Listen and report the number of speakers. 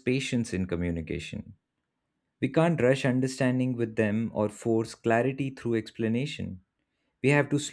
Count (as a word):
one